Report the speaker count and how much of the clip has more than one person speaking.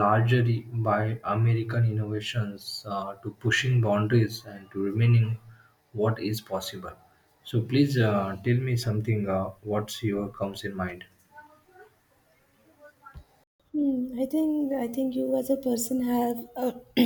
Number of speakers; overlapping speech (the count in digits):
2, no overlap